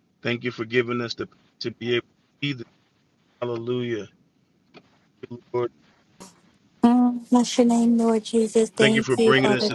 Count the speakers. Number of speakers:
2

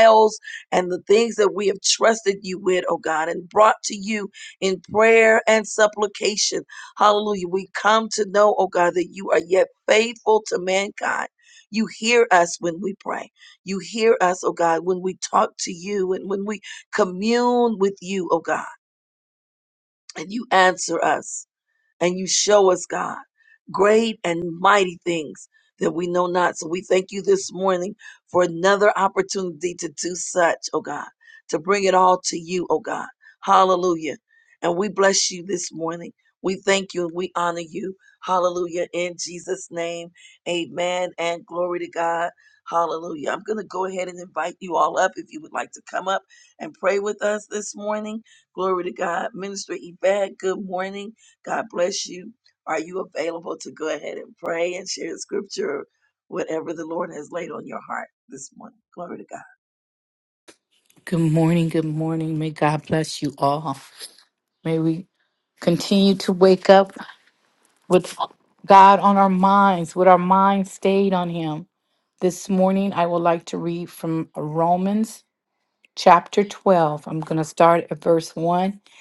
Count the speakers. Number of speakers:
2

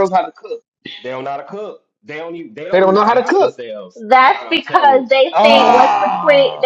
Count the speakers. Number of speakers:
3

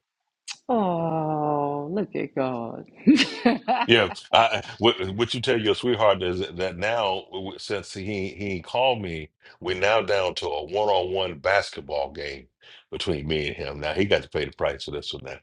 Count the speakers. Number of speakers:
2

